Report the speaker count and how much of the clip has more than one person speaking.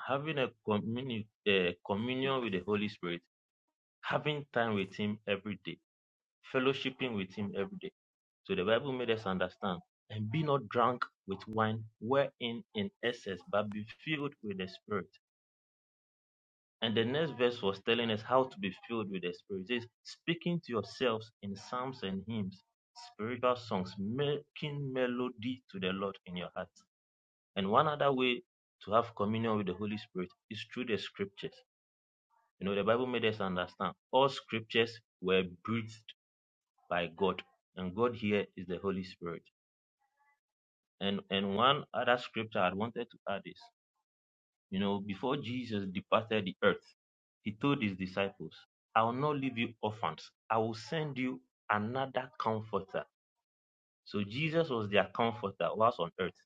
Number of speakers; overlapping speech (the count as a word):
one, no overlap